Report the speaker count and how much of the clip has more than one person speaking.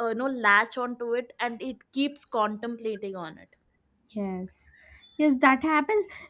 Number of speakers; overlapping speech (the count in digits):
2, no overlap